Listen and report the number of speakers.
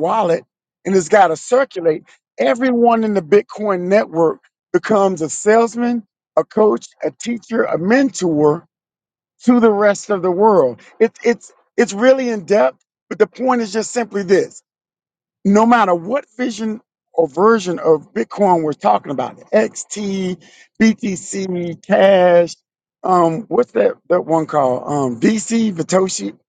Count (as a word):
one